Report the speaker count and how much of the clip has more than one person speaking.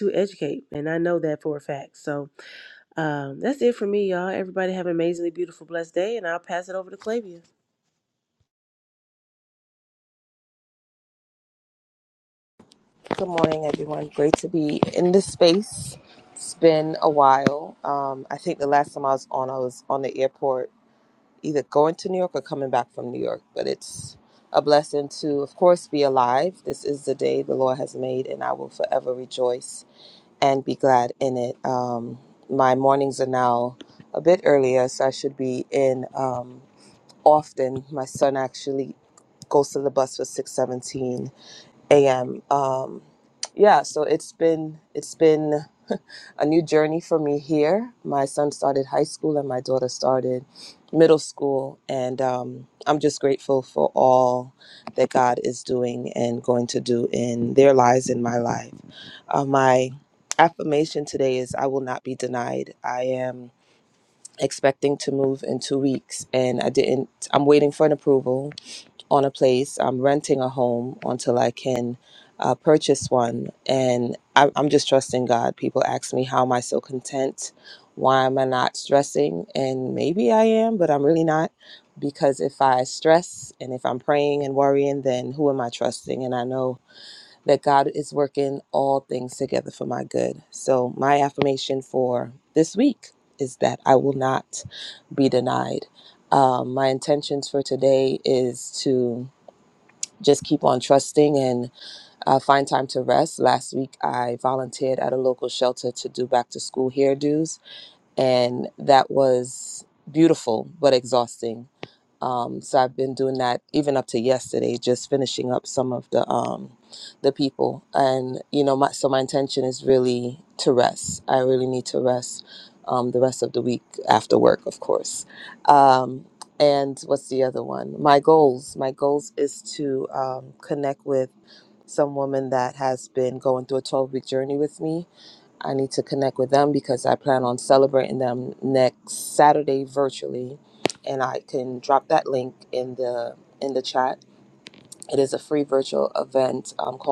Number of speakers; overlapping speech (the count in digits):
2, no overlap